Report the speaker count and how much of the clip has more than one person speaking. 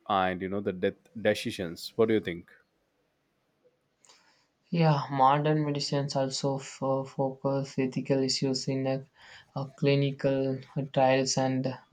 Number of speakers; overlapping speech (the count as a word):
two, no overlap